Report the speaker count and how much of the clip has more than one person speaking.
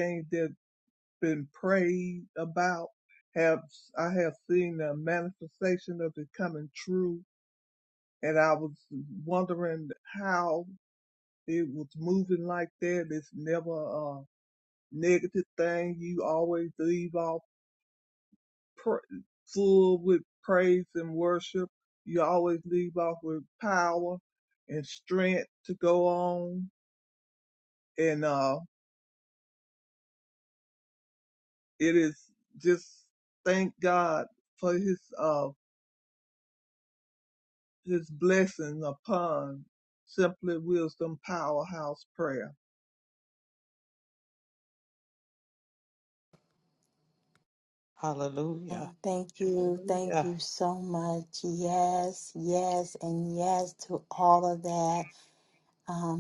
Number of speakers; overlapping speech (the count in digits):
3, about 2%